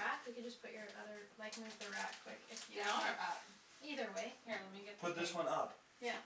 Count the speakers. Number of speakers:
3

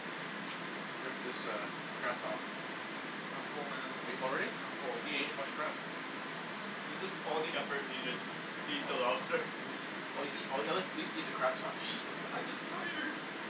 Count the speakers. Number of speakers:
2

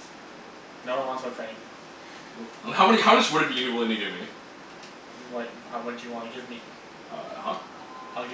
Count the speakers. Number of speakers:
2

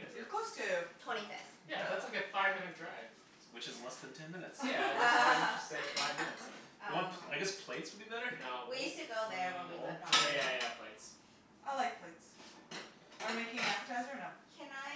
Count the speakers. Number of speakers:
4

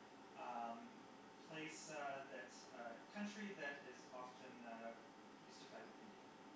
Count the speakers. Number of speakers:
1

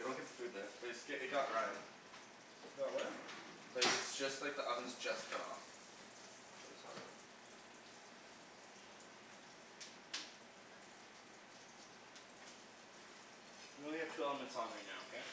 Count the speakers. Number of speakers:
2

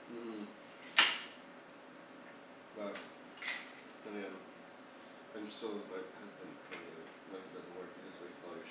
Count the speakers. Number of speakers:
1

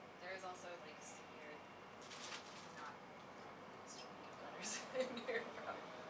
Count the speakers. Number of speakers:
1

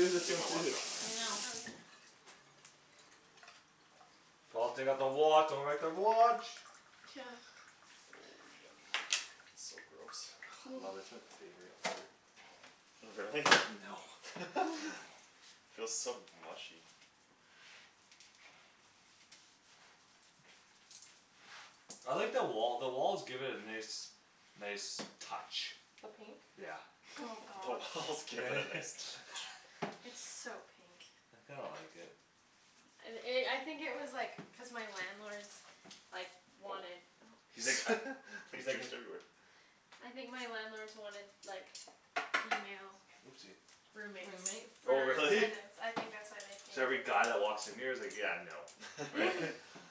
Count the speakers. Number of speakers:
4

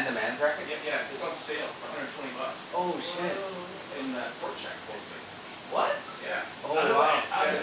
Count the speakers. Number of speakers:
3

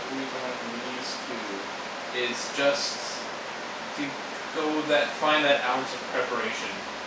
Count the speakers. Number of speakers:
1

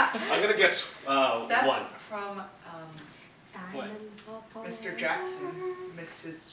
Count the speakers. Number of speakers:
3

